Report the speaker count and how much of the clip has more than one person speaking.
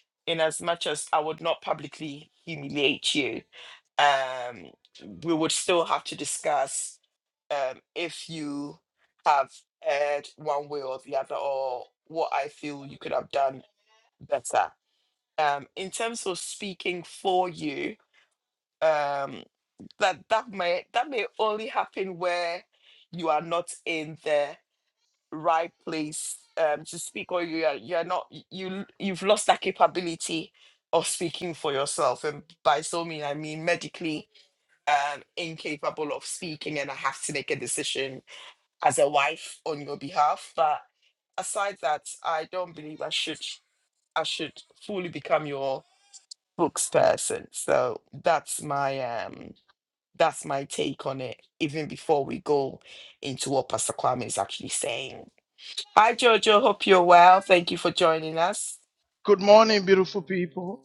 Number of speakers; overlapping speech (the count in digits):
2, no overlap